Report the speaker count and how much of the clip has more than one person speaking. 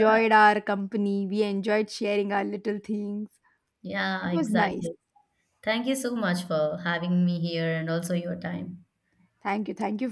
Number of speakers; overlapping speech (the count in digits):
2, about 6%